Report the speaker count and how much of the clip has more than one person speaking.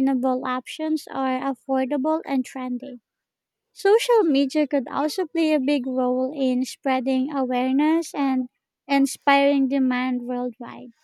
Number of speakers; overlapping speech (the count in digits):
1, no overlap